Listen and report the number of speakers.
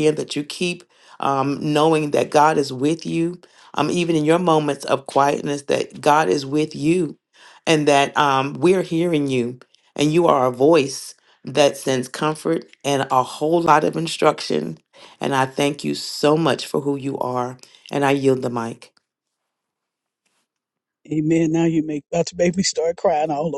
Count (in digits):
2